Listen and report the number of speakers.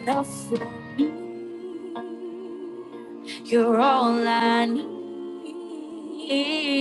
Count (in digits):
1